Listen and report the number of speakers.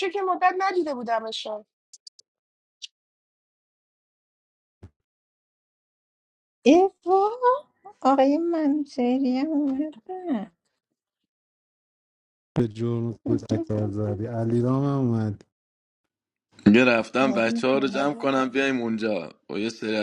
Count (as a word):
four